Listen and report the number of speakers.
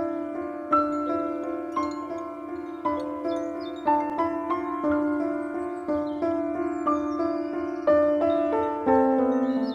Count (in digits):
0